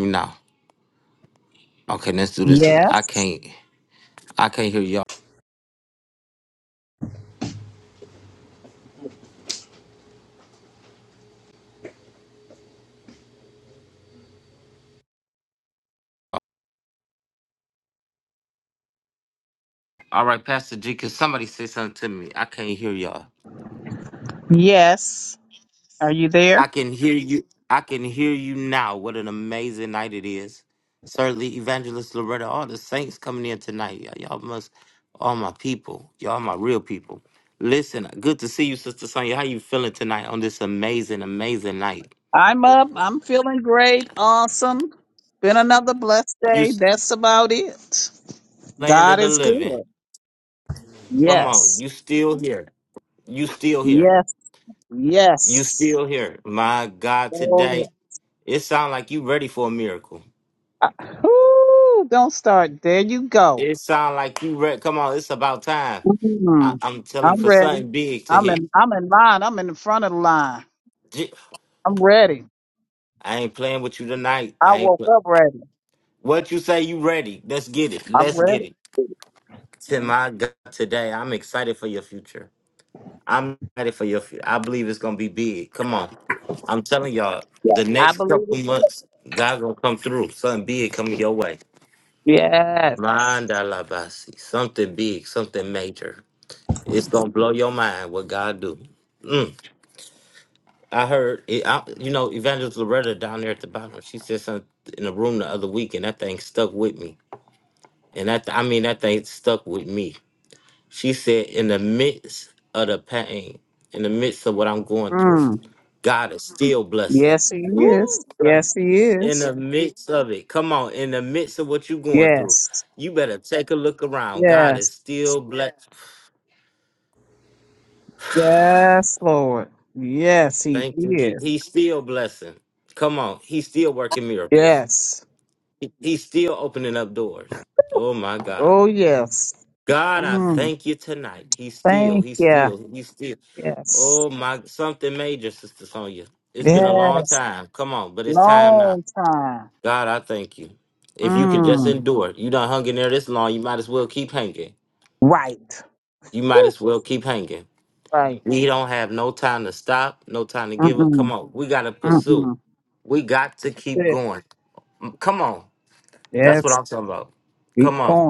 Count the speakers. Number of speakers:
2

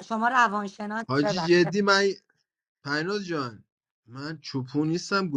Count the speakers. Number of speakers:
2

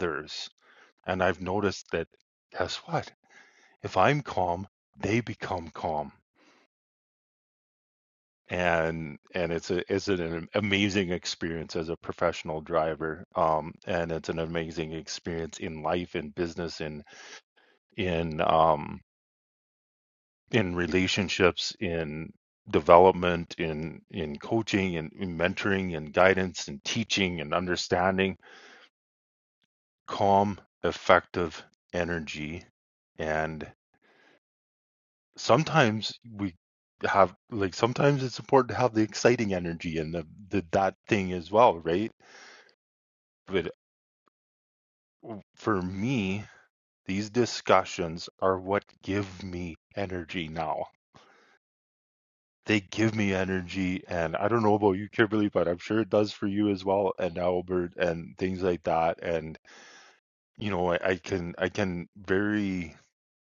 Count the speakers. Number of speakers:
1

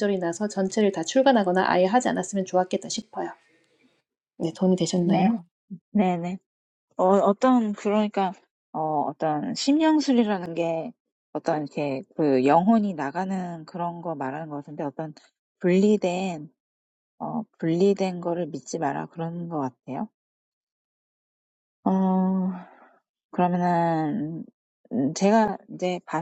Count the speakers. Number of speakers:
2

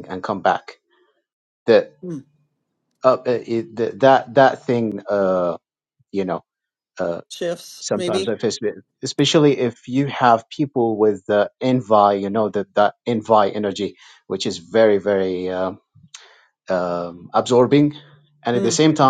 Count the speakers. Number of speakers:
2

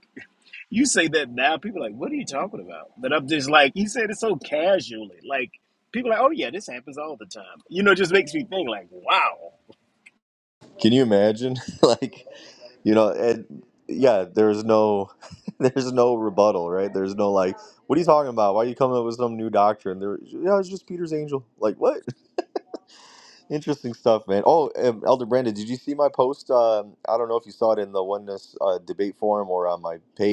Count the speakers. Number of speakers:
2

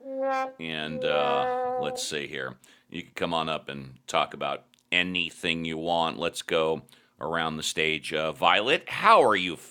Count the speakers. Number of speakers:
1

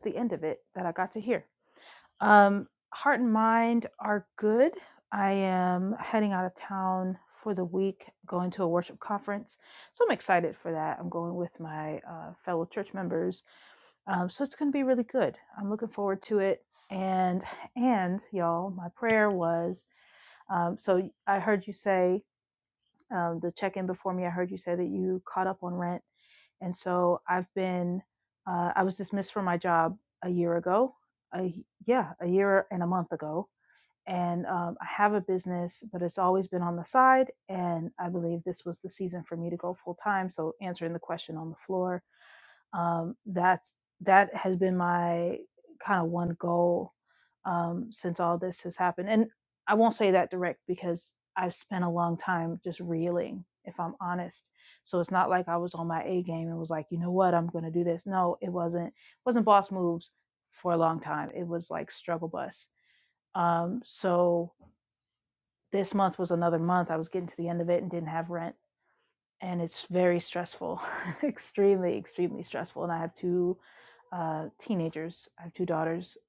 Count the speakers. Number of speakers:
1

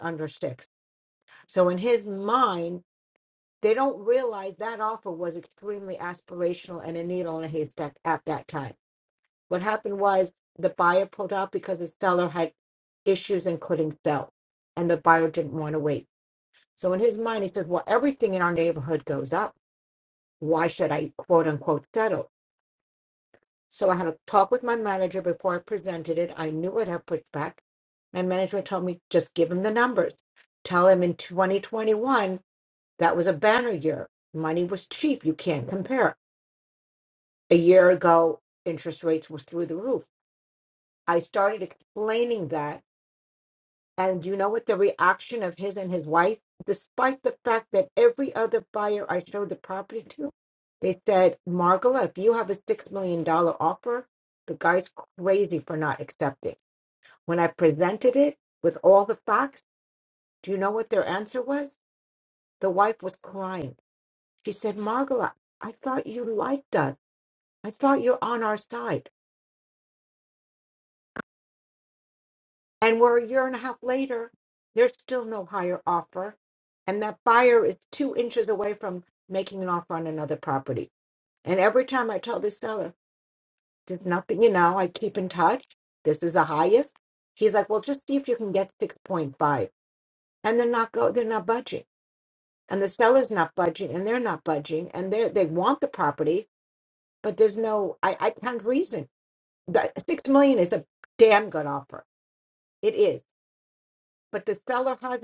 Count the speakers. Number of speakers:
1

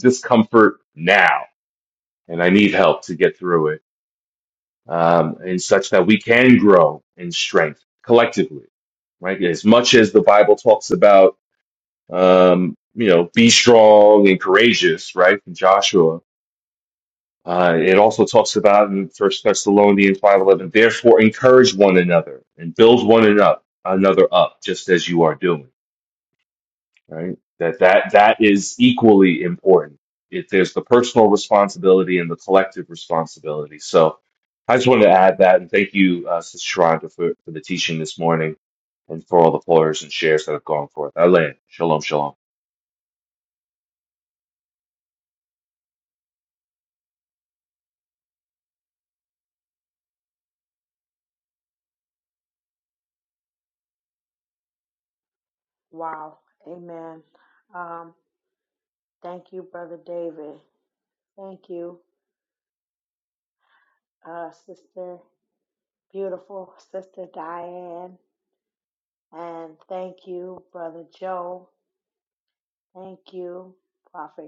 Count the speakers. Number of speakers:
2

